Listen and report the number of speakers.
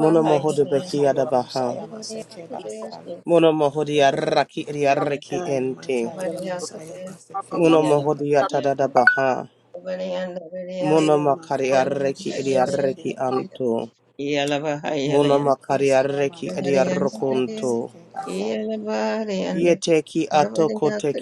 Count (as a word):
three